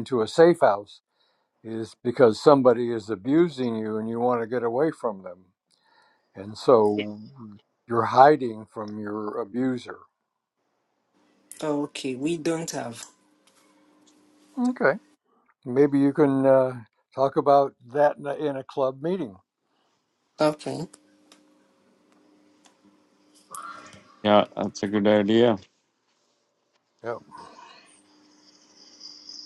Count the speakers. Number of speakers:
three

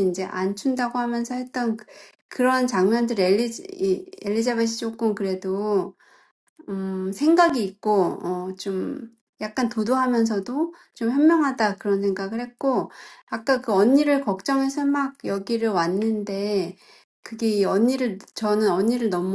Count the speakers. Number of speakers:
one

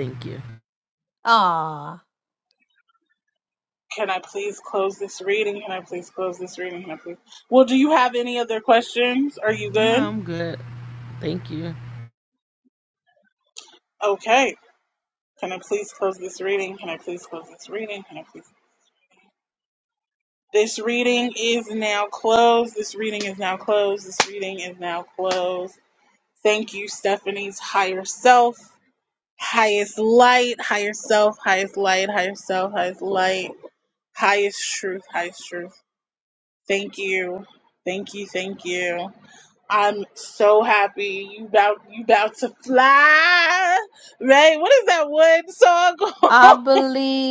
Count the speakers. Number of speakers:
three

